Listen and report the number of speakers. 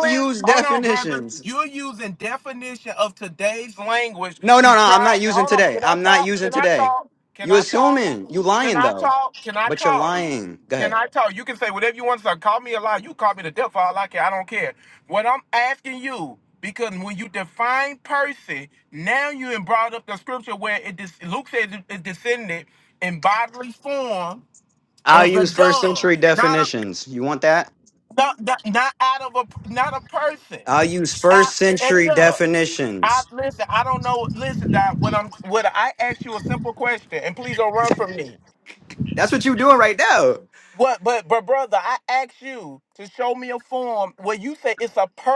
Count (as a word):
two